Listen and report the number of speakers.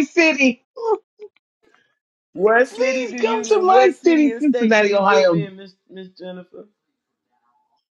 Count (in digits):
2